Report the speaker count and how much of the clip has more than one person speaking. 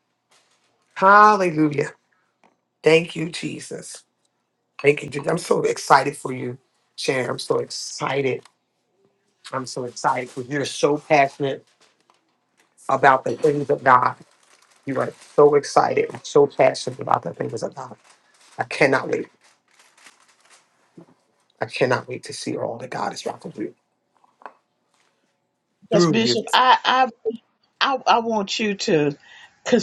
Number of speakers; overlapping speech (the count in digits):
2, about 1%